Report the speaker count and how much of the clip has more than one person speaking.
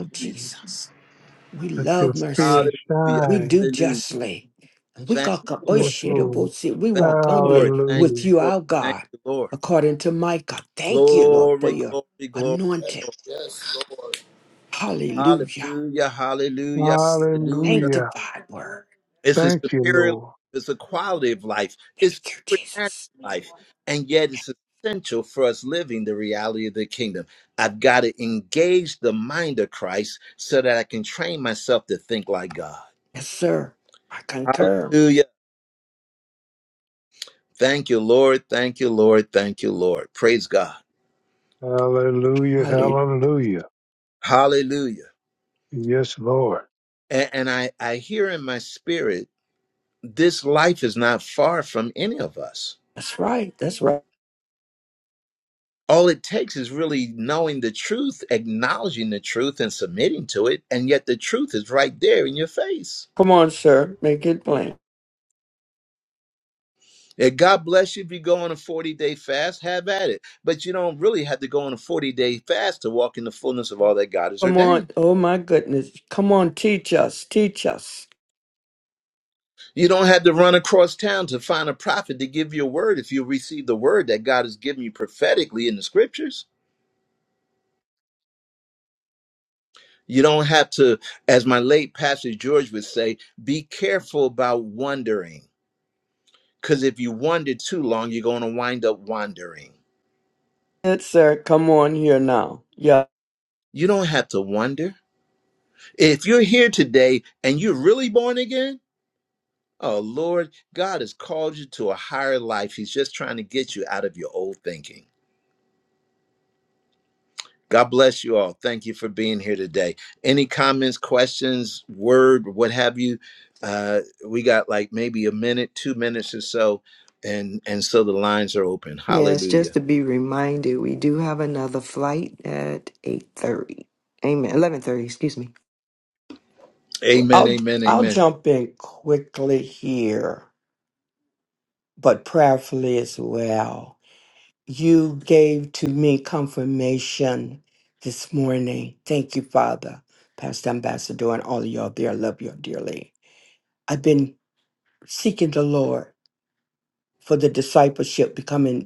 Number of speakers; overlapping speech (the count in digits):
5, about 7%